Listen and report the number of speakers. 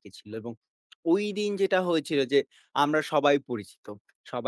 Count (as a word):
one